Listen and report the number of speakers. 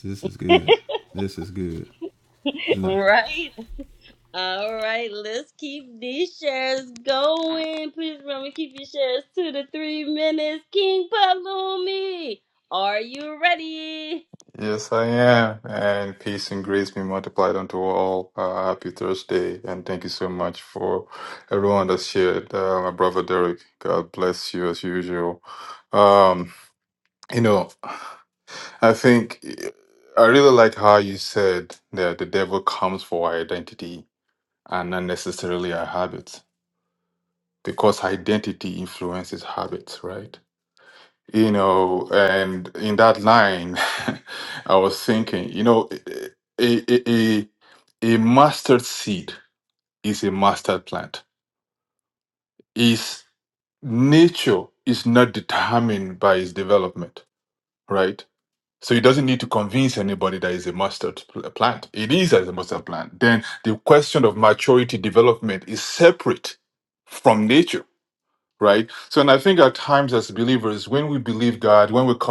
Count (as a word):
three